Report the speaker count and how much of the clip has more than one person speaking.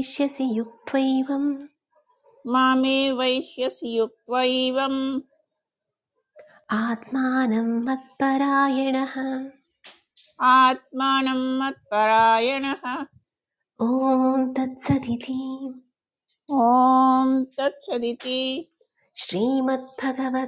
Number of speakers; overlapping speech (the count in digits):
2, no overlap